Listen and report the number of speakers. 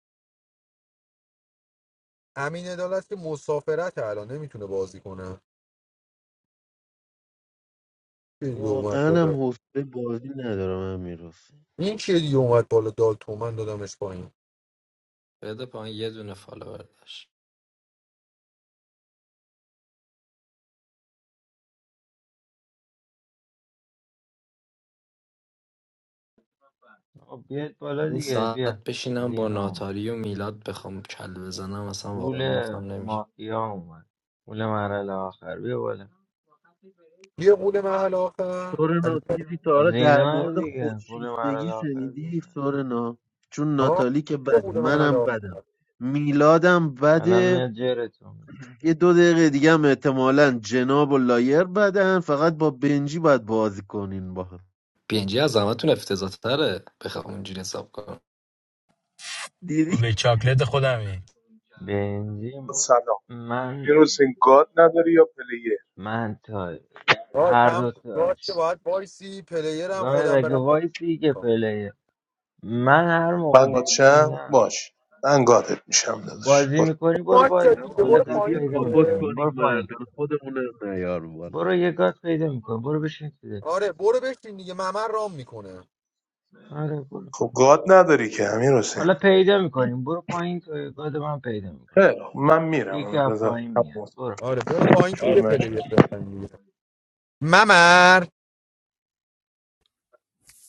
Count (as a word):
six